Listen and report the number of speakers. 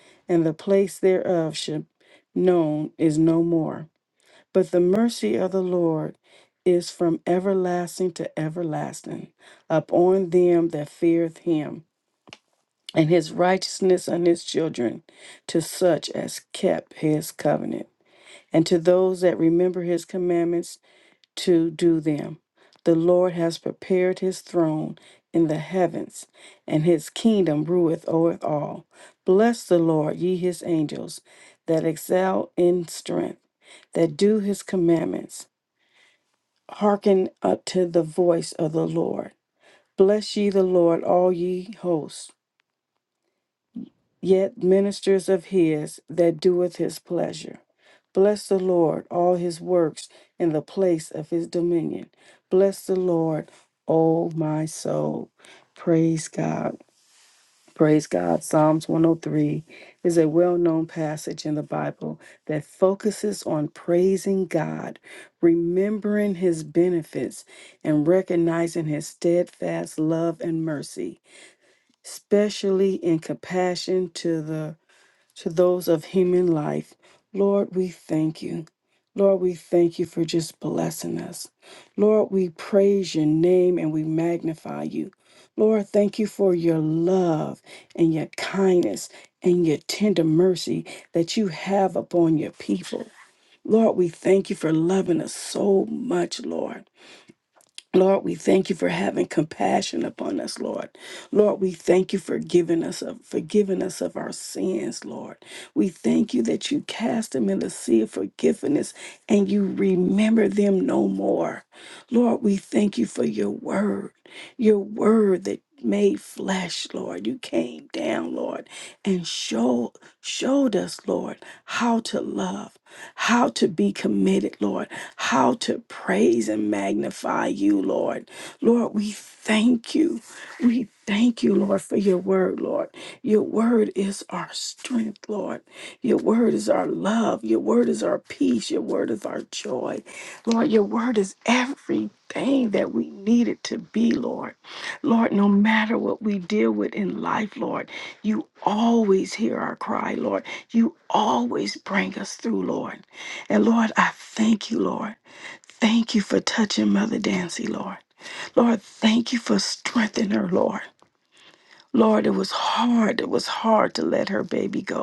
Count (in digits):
1